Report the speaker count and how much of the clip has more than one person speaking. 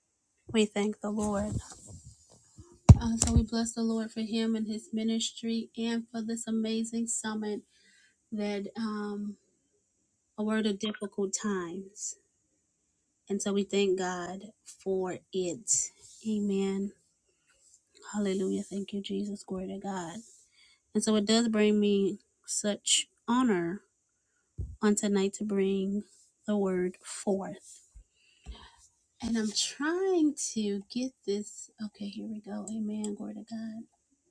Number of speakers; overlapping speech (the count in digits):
1, no overlap